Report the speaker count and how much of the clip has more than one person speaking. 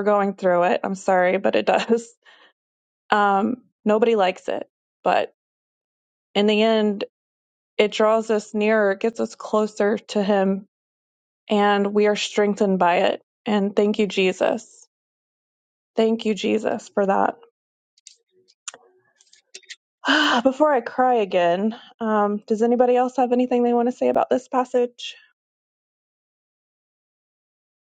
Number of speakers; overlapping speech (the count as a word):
one, no overlap